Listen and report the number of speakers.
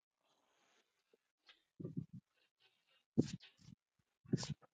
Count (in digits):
0